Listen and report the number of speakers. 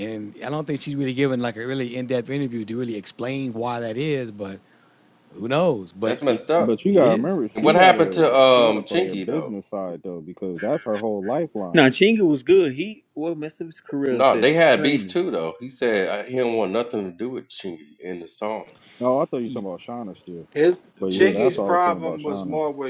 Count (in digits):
5